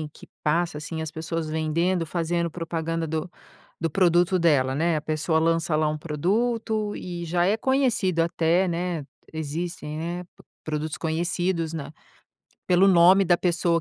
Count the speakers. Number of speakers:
1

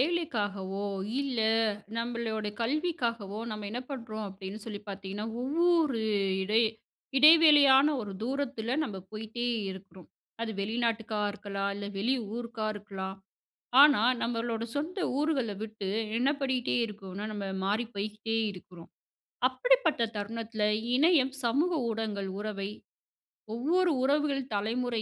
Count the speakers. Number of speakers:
1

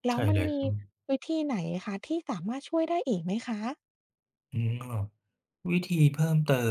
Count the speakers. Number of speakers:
2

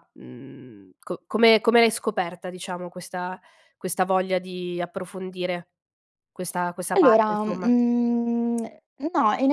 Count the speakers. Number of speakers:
2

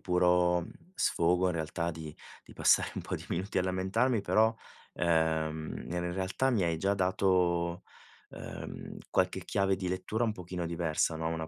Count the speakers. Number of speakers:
1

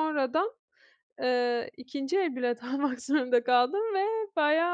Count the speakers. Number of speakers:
1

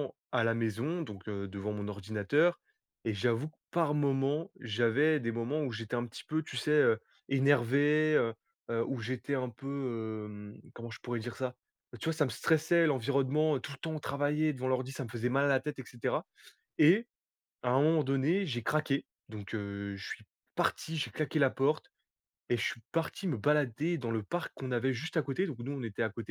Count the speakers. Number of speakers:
1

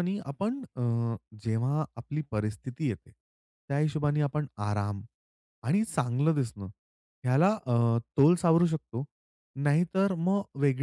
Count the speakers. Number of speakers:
1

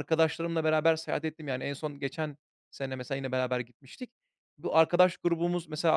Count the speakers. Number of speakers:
1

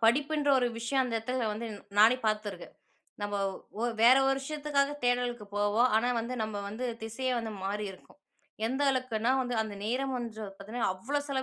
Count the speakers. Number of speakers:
1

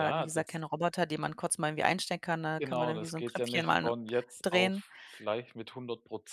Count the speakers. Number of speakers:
2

